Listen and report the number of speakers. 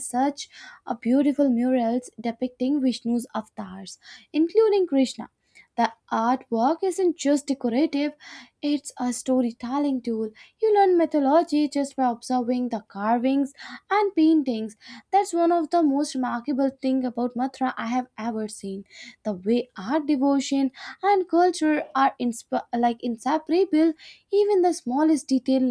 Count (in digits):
1